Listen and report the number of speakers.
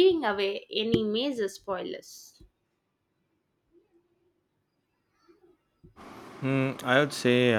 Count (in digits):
2